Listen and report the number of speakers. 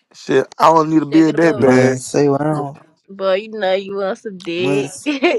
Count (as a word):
three